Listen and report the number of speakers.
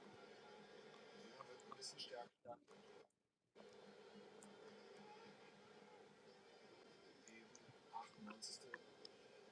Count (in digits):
0